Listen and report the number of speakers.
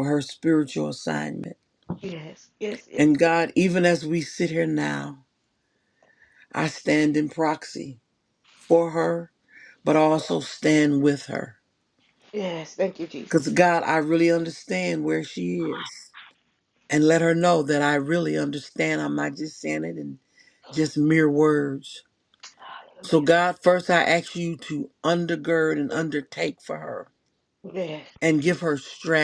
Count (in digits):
2